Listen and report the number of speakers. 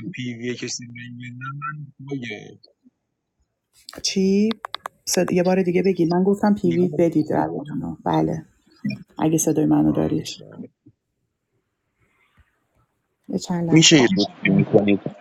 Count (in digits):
3